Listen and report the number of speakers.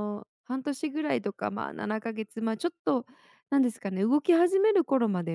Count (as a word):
one